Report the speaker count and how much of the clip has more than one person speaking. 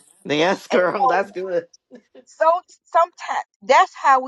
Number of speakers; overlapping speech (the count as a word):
two, about 13%